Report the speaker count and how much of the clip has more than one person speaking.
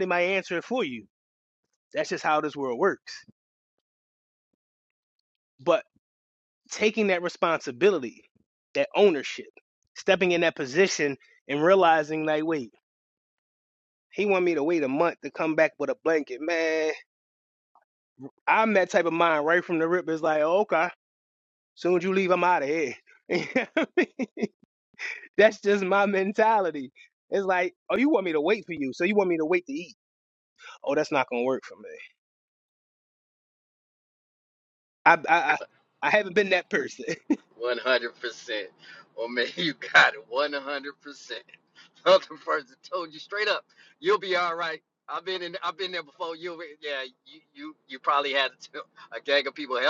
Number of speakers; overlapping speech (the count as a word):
two, no overlap